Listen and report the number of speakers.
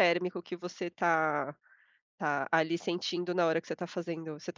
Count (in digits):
1